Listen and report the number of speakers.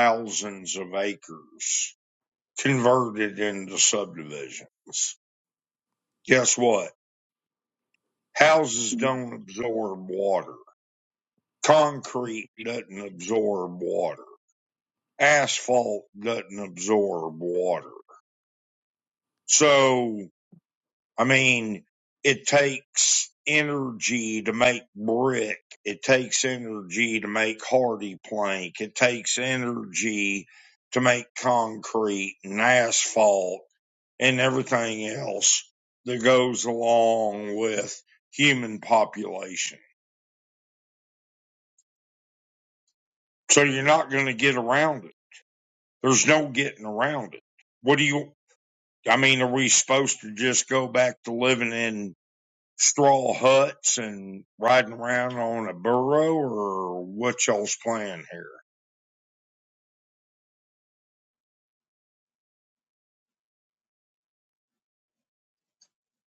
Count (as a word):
one